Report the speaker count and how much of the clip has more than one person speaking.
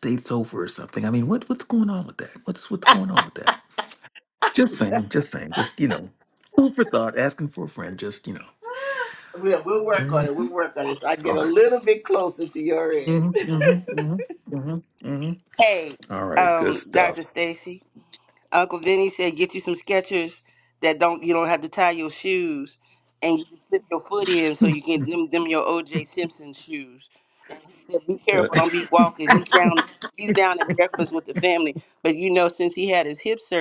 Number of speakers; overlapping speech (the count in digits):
3, about 6%